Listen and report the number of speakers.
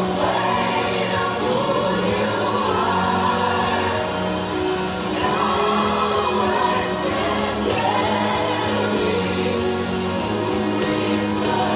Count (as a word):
zero